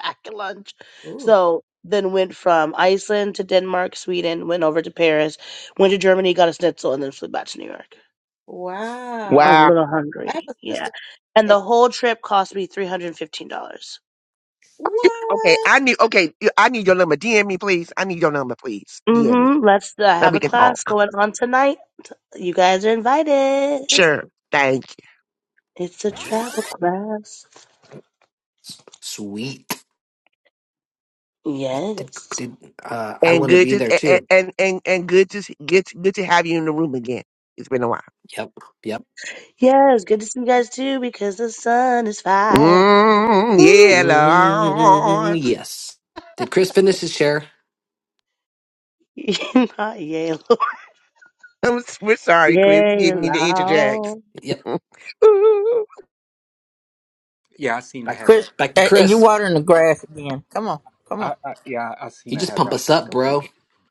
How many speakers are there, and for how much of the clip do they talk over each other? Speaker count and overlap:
six, about 13%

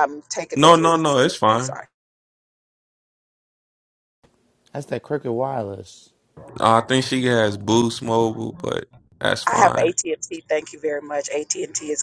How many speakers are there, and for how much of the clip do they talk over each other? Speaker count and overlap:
three, about 10%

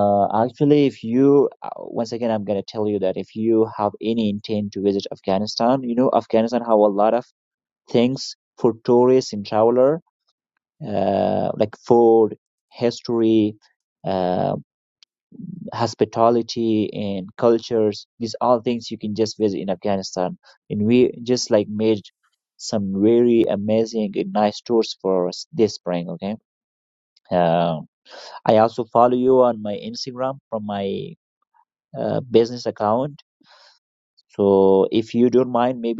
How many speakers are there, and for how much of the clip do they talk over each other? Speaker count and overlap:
one, no overlap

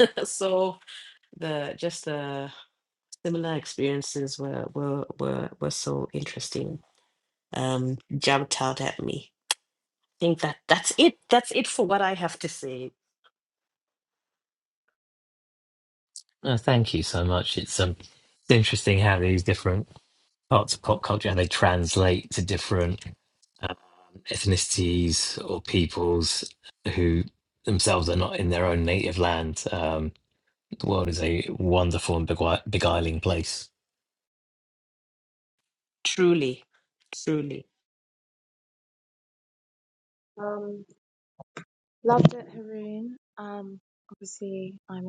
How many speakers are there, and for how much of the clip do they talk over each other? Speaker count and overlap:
three, no overlap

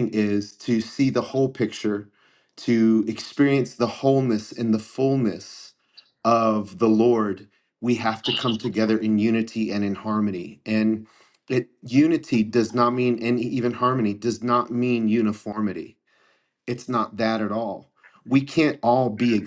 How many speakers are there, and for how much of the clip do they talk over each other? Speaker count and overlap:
one, no overlap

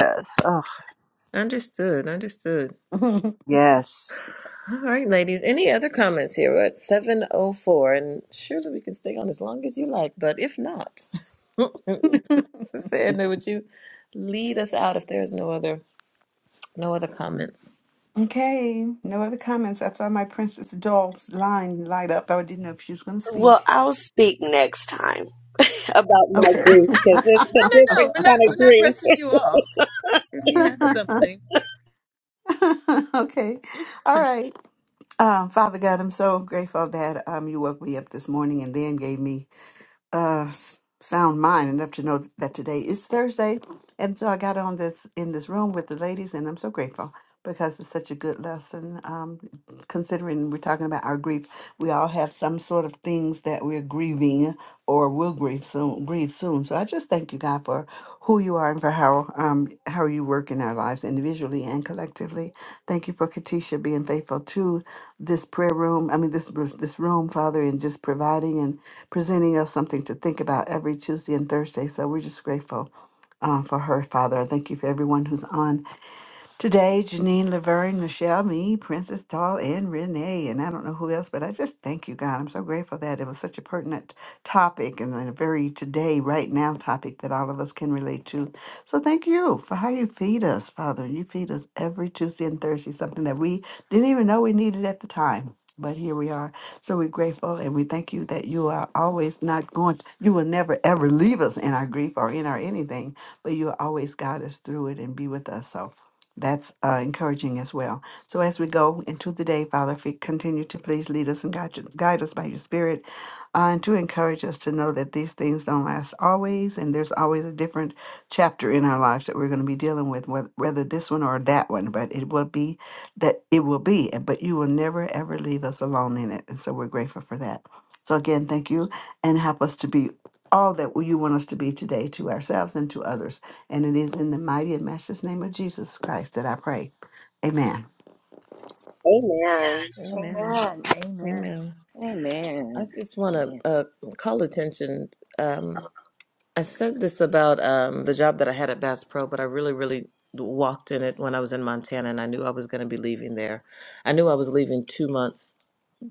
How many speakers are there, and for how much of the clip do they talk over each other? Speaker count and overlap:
five, about 2%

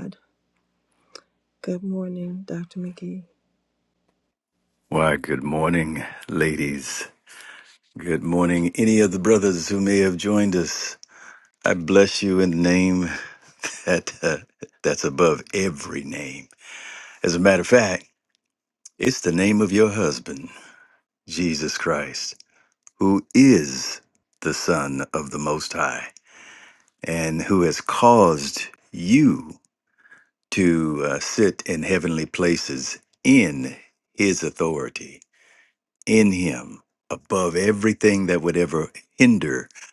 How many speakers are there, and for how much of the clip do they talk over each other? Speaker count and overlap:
two, no overlap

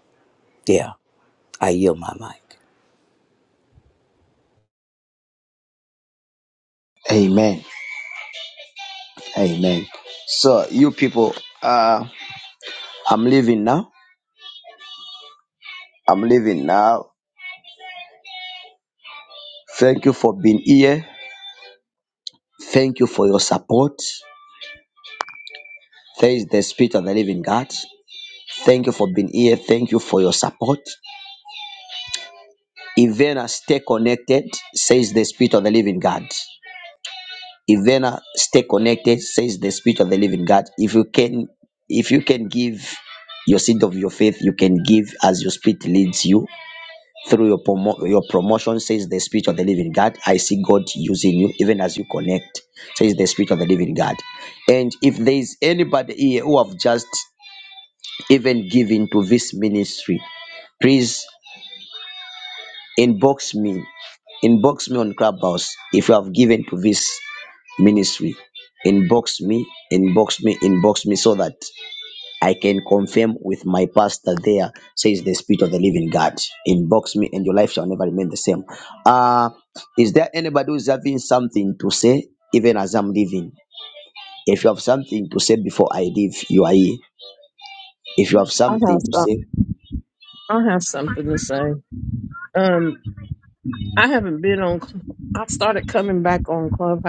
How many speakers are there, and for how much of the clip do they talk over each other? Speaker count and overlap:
three, about 1%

